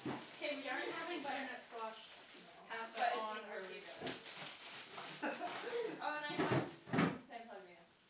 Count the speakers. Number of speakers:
2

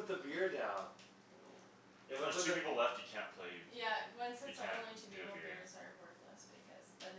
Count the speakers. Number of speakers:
3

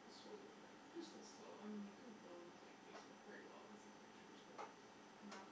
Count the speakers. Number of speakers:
1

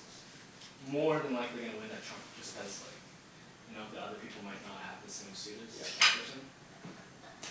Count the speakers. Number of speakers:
1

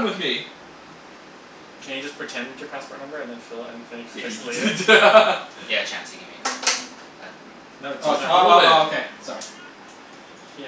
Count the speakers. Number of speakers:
4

